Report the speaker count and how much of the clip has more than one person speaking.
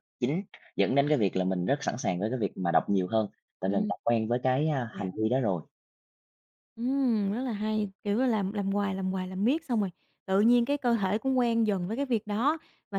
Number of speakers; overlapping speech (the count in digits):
2, about 3%